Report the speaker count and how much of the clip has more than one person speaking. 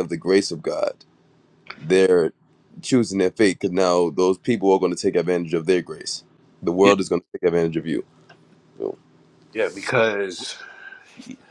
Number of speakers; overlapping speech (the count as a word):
two, about 1%